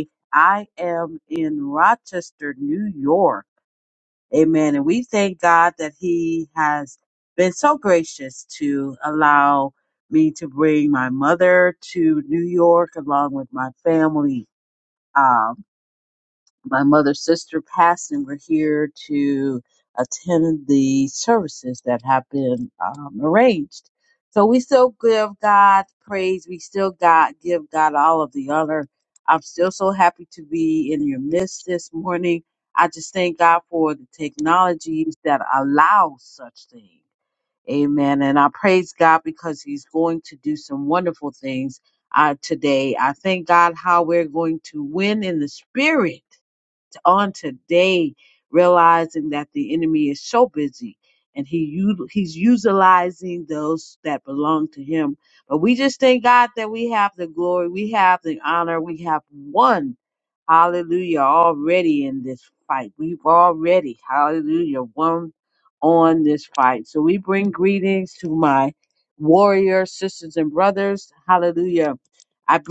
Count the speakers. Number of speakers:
one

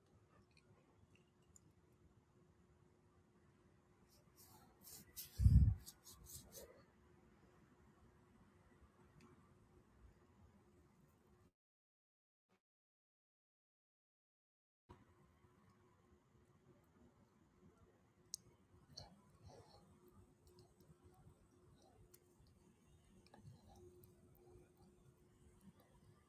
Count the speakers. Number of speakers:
zero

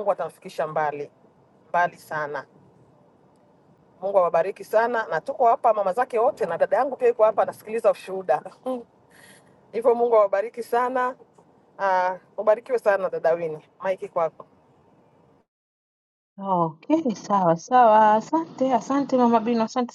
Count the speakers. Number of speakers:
two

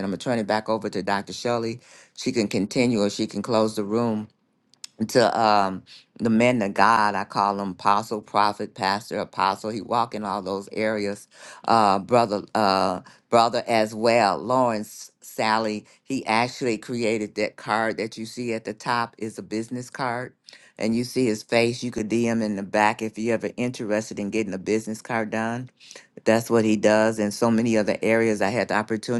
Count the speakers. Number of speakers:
one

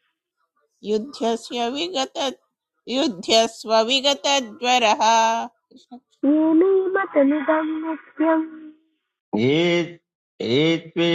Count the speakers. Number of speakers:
three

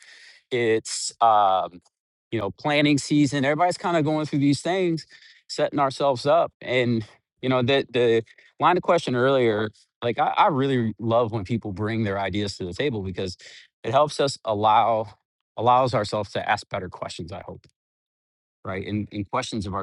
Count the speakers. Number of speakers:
one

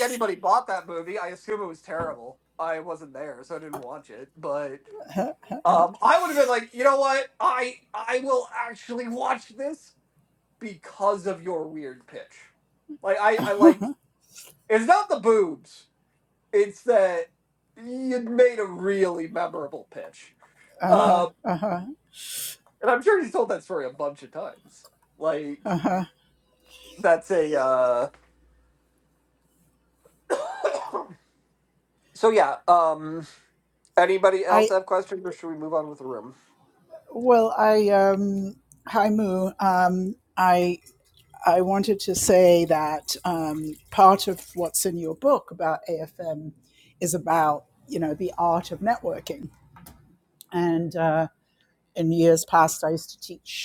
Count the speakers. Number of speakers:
two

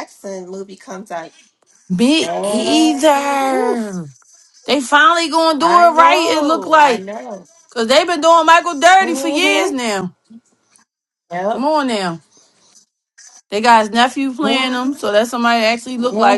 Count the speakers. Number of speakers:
two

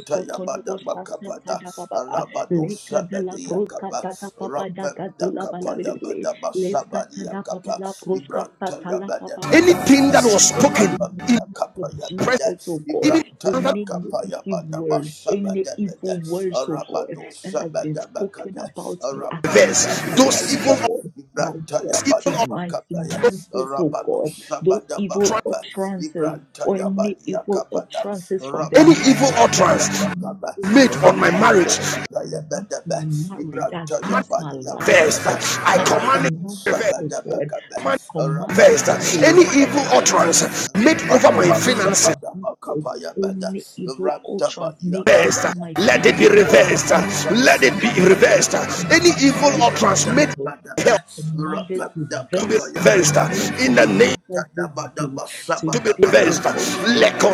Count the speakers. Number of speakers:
three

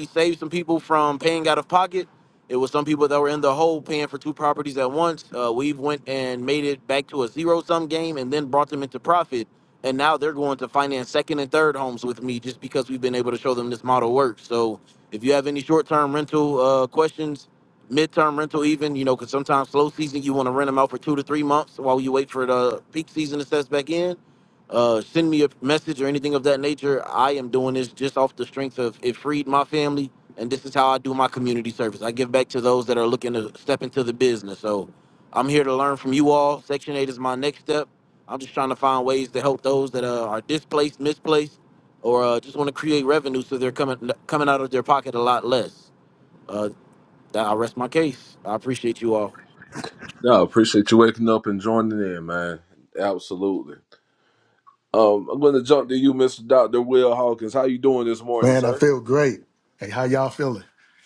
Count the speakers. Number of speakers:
three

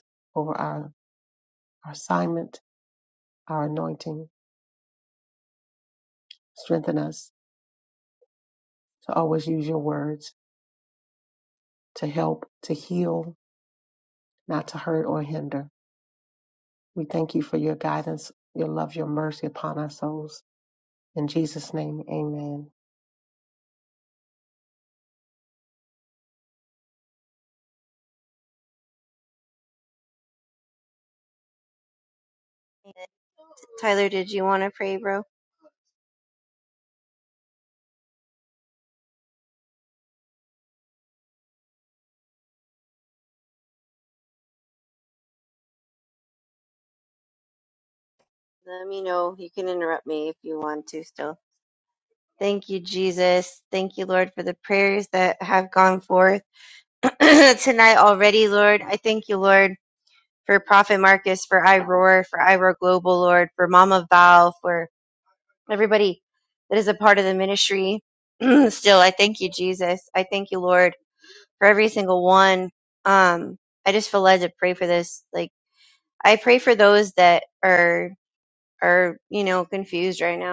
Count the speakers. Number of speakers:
two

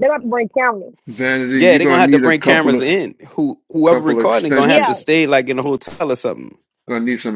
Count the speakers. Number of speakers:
three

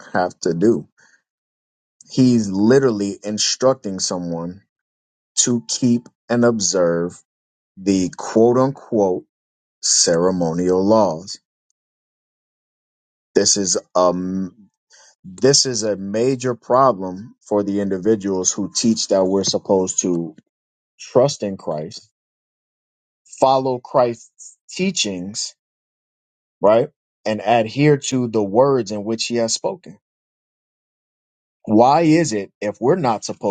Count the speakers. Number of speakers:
one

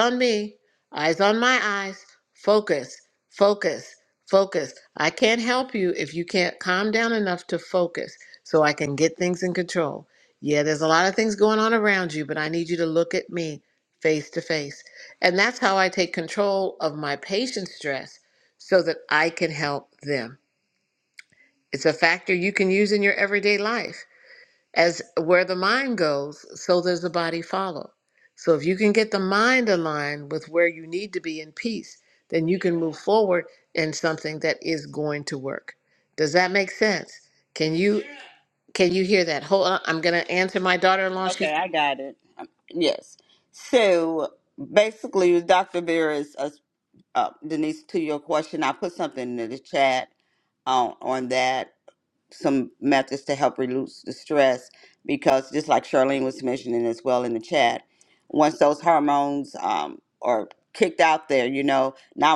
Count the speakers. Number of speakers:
two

